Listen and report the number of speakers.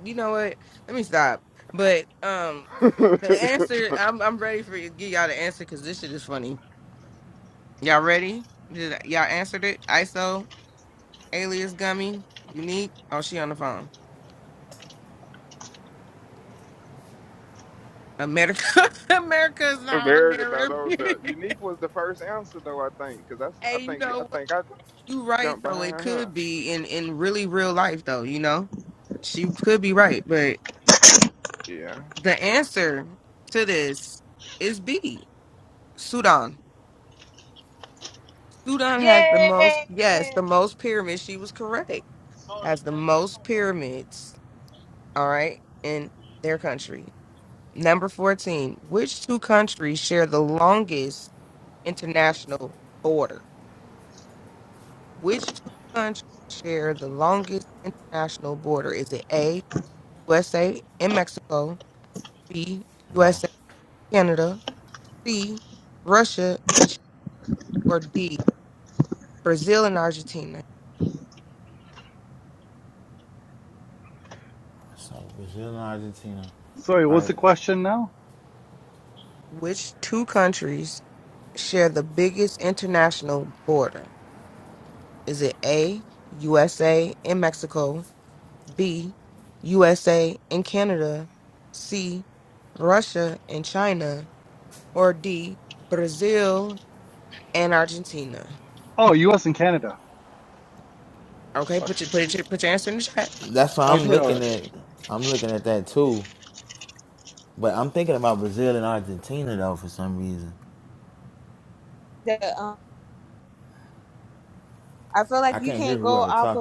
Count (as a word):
five